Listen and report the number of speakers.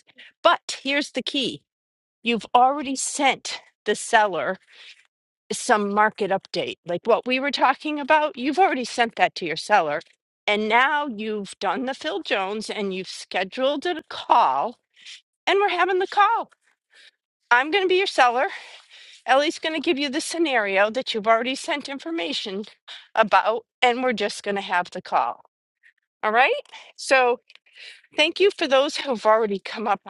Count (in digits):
1